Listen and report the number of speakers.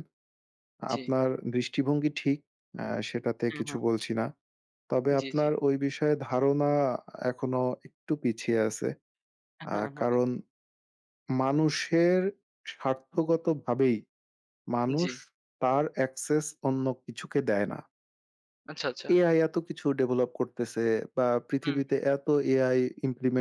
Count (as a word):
two